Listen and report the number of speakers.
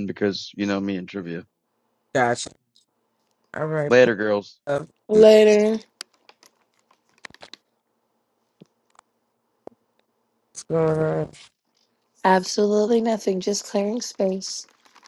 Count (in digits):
3